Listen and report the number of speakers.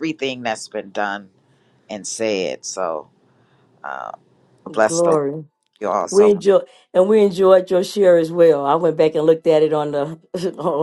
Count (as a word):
two